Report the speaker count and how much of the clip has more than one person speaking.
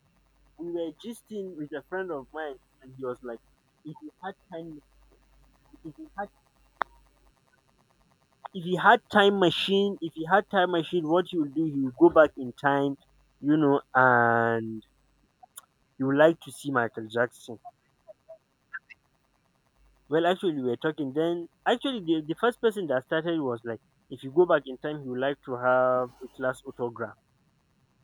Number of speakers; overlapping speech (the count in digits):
1, no overlap